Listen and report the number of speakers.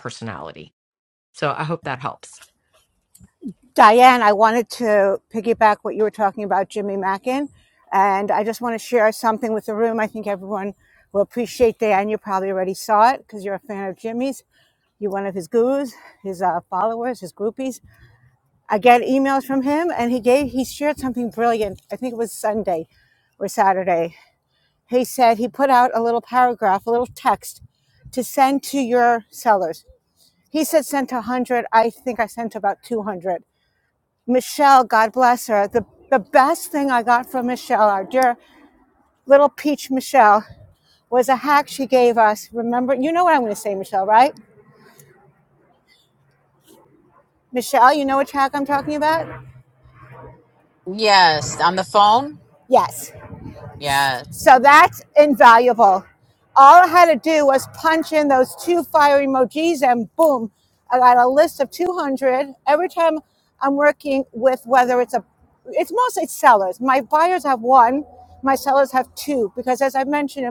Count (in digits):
3